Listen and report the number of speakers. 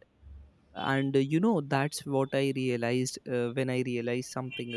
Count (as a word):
one